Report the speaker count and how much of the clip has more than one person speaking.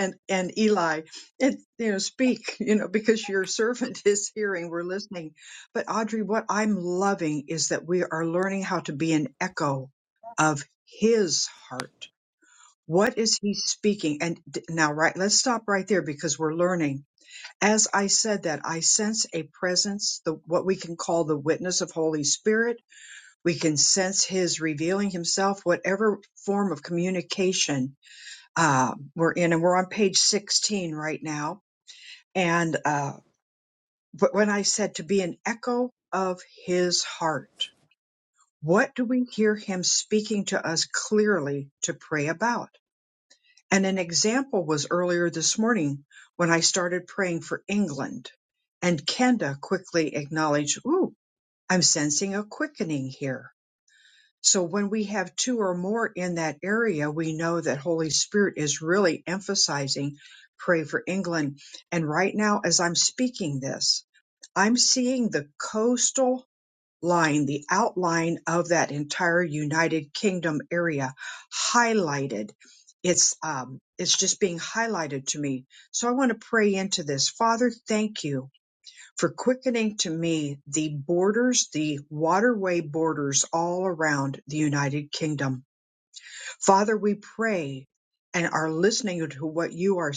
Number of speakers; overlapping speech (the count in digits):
1, no overlap